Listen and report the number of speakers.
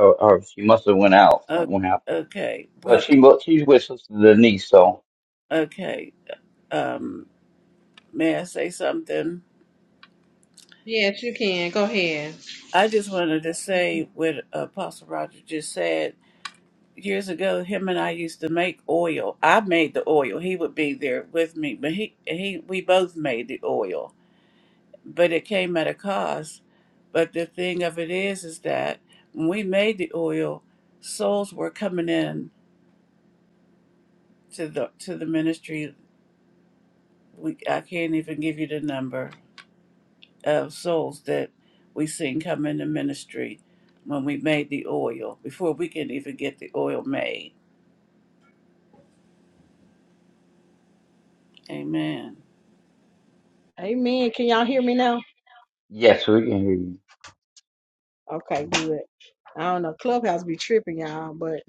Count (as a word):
four